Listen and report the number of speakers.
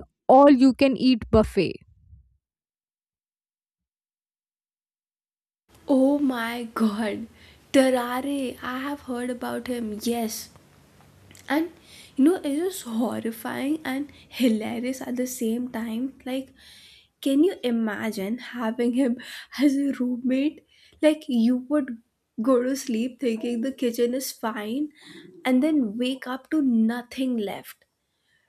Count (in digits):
2